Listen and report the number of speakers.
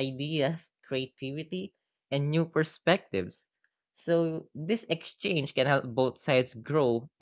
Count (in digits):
1